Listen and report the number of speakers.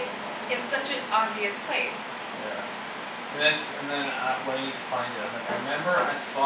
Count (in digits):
2